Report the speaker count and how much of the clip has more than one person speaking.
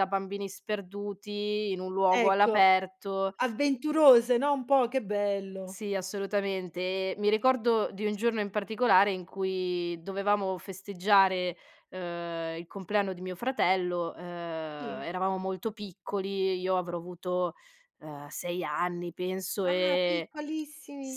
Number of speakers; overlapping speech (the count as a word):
two, about 6%